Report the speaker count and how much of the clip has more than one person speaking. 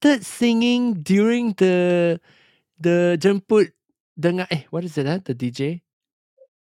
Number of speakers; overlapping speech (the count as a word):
one, no overlap